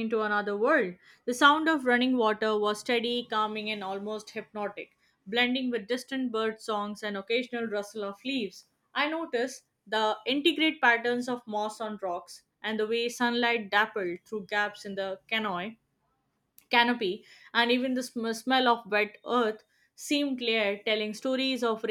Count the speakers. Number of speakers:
1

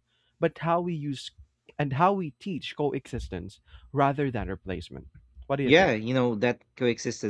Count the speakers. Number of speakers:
2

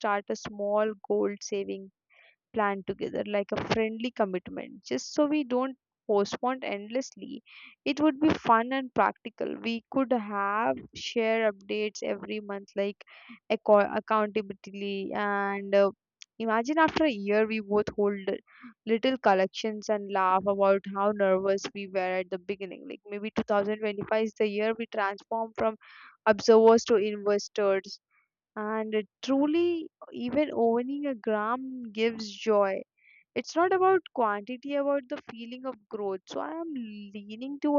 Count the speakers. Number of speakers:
1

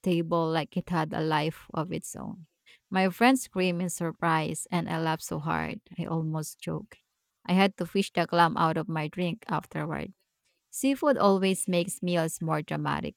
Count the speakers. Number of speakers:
1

